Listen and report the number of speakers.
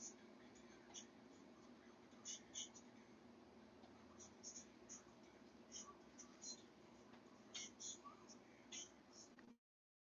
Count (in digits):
0